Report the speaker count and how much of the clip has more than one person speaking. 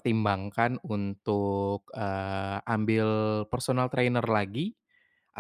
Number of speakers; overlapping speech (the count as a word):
one, no overlap